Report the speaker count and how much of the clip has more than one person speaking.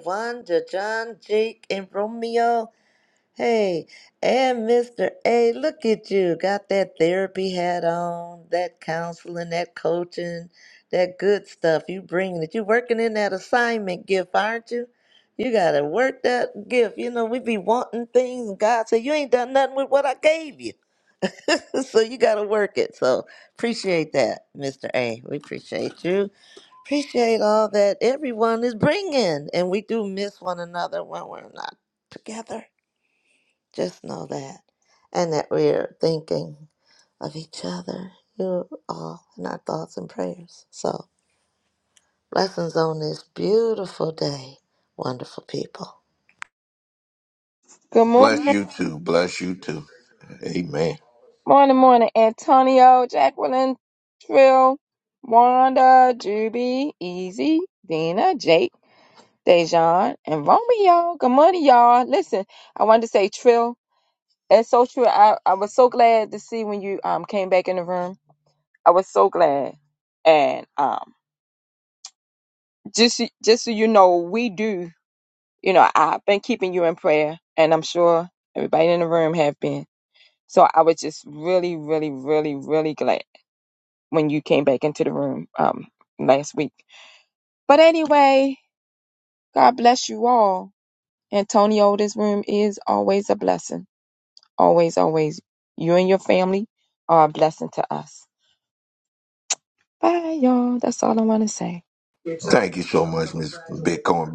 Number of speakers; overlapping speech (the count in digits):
3, under 1%